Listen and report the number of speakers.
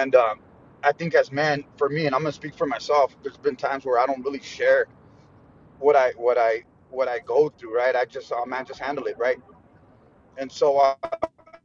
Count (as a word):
one